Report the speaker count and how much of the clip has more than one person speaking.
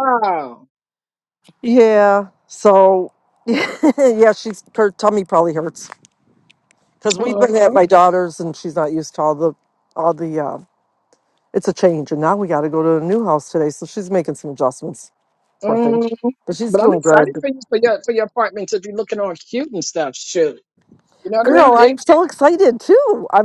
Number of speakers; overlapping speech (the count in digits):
2, about 9%